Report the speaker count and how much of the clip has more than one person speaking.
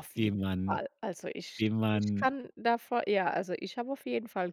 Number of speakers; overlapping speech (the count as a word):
two, about 14%